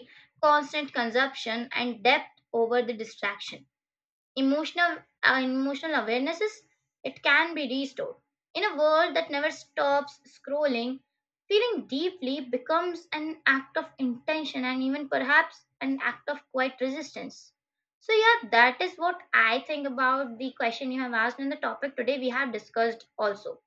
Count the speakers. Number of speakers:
one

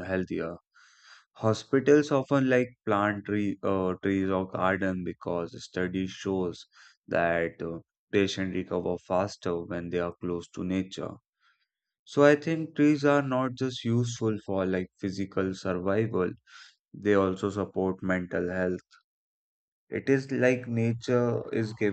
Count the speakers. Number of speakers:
one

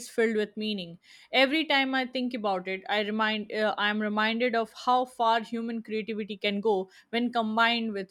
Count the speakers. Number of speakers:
one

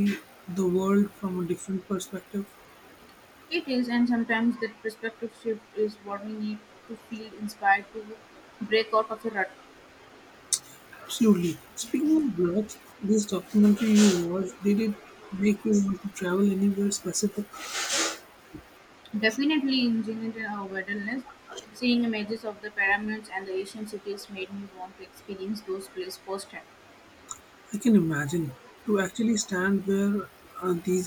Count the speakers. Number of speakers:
two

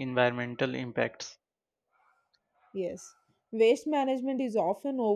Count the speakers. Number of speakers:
two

